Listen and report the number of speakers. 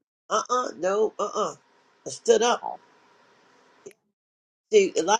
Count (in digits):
1